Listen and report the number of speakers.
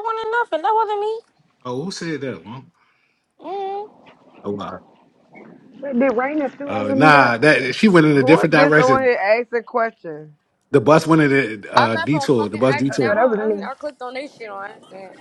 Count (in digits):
5